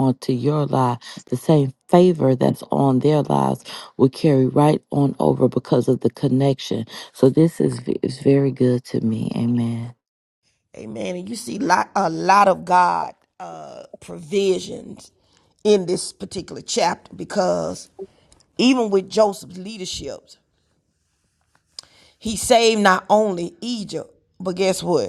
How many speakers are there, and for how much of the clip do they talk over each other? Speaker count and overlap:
two, no overlap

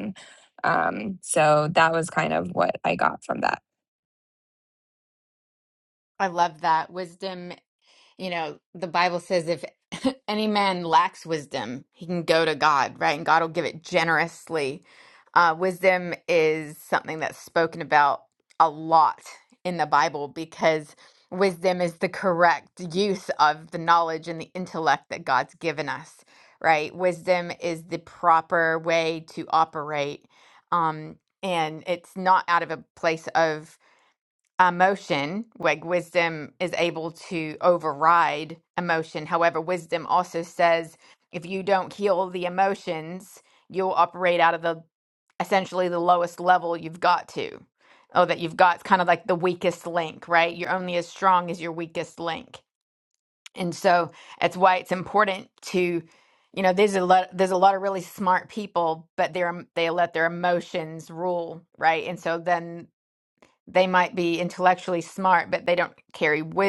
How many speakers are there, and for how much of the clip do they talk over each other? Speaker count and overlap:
two, no overlap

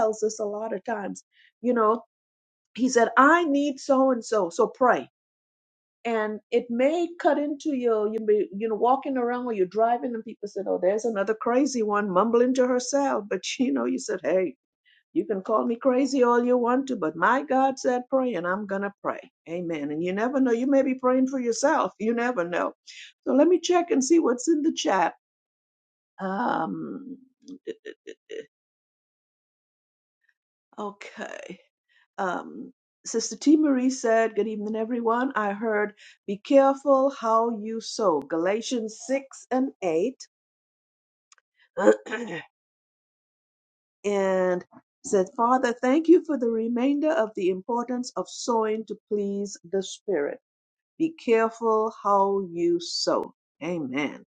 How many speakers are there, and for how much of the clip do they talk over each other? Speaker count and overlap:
one, no overlap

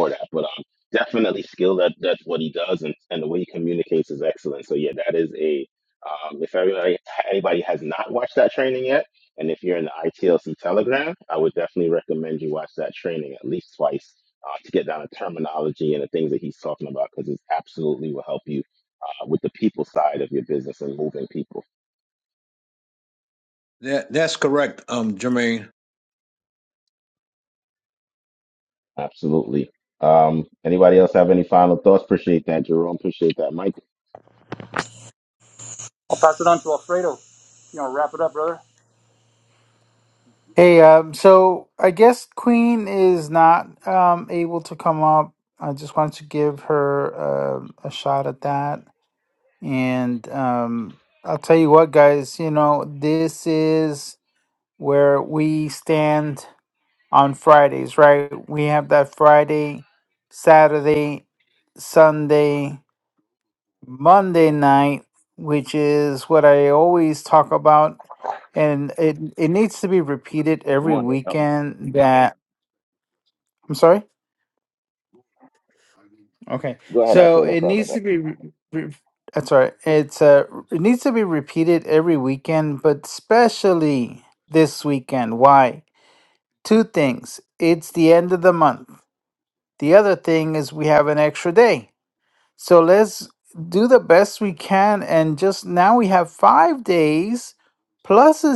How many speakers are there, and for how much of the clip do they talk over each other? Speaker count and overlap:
four, about 2%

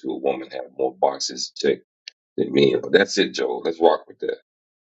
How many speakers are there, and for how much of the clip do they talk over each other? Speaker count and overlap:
one, no overlap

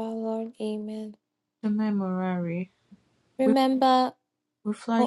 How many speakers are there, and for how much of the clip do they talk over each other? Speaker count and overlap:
two, about 4%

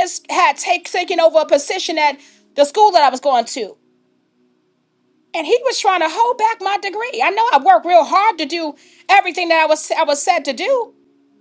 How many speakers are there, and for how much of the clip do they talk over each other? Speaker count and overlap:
one, no overlap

